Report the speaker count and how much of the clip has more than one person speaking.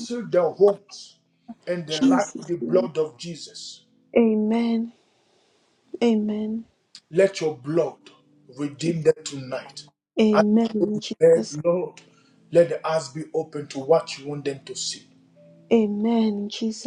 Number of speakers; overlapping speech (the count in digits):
2, about 12%